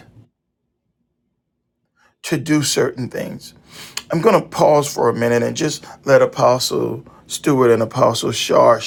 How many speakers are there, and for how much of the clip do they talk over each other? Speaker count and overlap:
1, no overlap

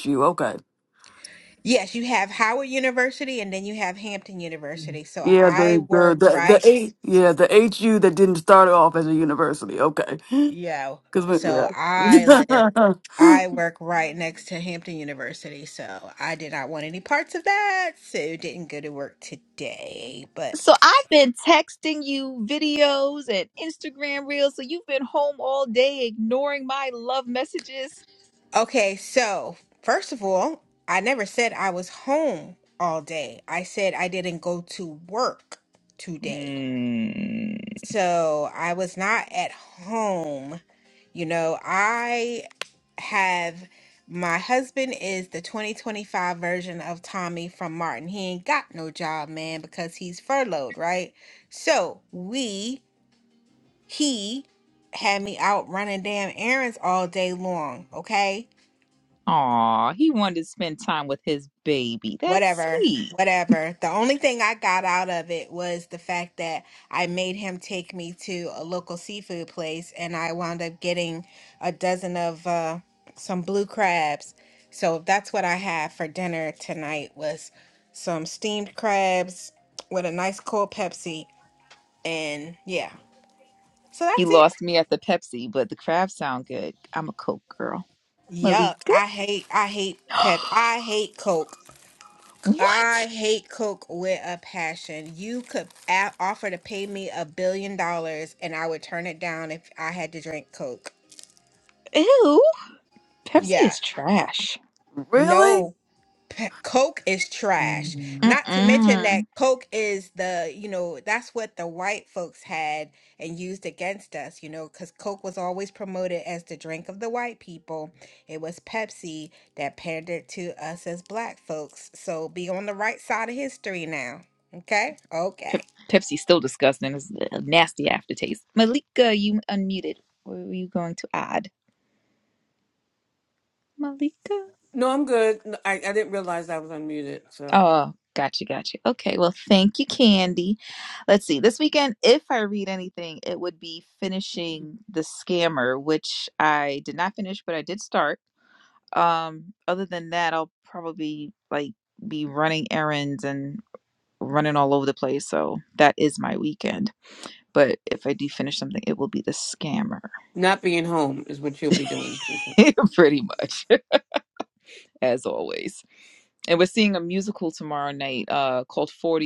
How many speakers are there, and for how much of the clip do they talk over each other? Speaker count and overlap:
4, about 4%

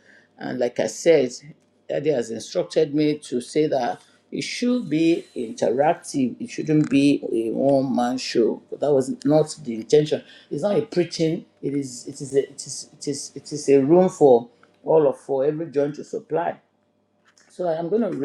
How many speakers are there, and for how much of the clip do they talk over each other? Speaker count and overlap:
1, no overlap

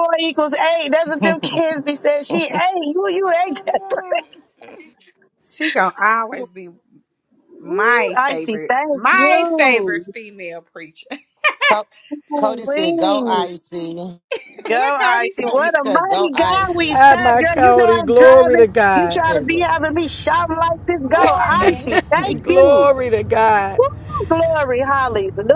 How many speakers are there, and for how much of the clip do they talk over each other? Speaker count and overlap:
4, about 40%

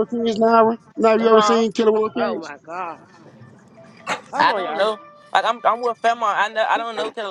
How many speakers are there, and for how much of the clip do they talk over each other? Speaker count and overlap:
3, about 18%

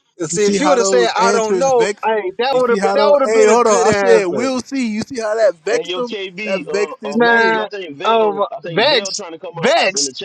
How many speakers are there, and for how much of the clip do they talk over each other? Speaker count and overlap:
3, about 66%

